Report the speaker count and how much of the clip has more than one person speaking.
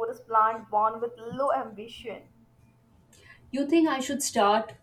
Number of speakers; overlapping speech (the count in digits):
2, no overlap